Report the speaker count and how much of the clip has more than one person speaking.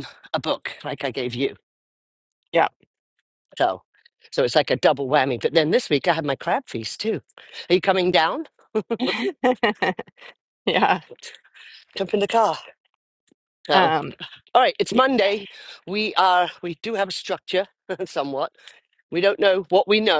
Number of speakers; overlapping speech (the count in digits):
2, about 2%